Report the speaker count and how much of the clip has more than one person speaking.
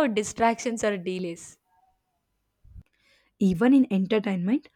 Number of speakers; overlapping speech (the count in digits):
2, no overlap